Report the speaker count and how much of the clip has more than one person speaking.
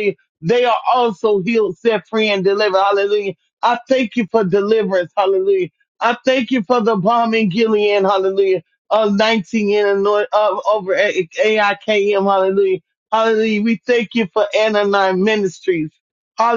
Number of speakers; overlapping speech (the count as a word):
one, no overlap